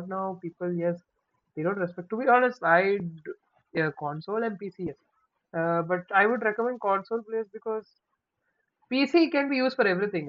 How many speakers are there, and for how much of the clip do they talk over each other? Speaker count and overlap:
1, no overlap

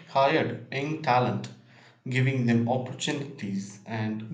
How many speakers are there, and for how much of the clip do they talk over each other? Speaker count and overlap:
1, no overlap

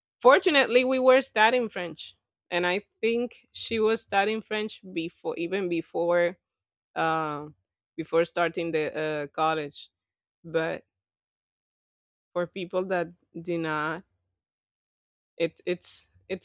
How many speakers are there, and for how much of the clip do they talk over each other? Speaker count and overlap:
1, no overlap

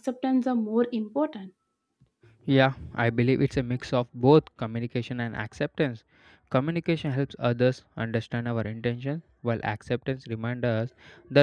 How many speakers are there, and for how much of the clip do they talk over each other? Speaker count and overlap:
2, no overlap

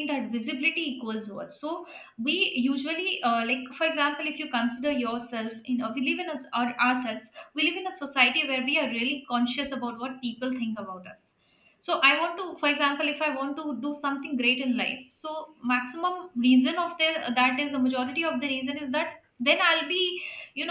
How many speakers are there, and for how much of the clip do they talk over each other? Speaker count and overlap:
1, no overlap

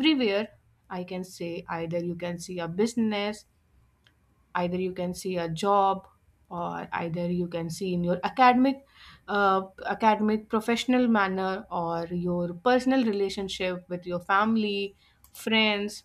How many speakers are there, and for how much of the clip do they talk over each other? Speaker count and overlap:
1, no overlap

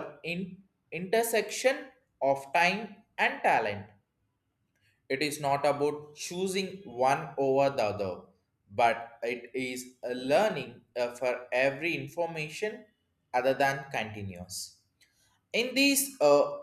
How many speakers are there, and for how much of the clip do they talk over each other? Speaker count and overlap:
1, no overlap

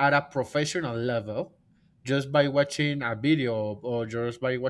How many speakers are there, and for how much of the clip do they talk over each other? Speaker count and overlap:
1, no overlap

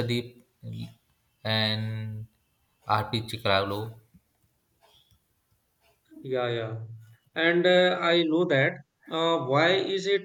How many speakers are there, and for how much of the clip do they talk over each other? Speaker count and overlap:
2, no overlap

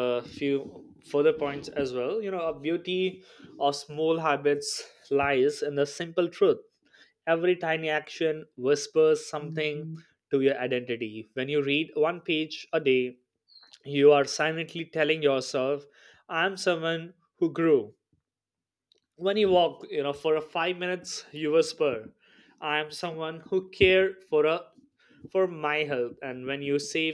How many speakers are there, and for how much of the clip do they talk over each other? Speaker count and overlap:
1, no overlap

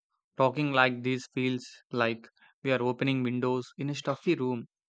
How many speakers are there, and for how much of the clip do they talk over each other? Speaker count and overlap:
1, no overlap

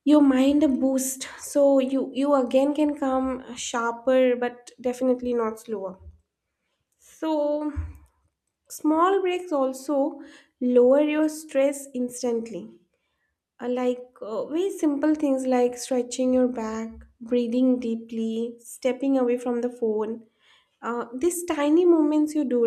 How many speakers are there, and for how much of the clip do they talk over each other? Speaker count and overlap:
1, no overlap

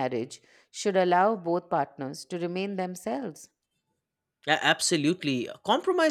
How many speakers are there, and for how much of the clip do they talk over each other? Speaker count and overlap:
2, no overlap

